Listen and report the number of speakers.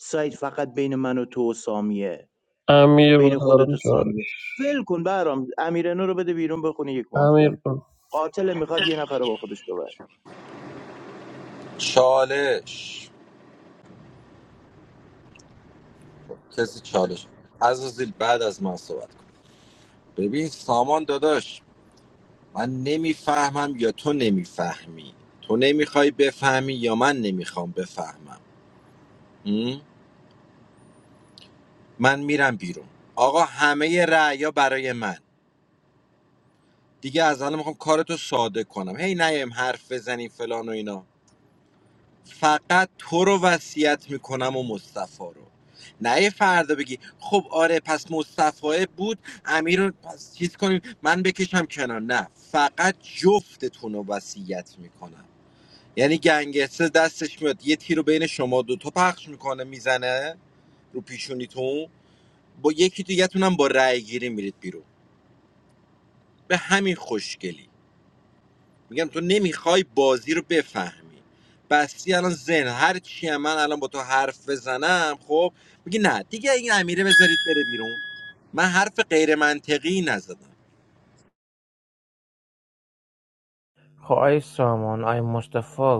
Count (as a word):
four